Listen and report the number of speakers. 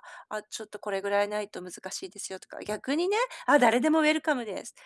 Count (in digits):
1